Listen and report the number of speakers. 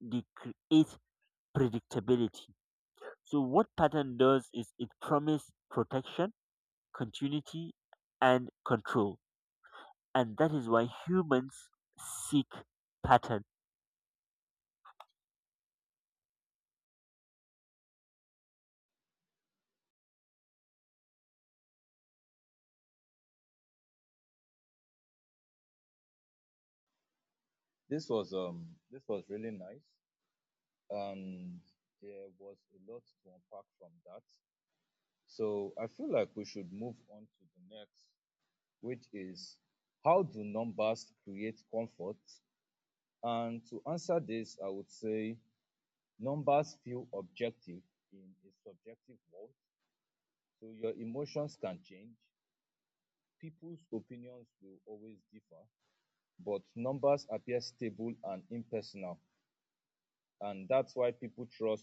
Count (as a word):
two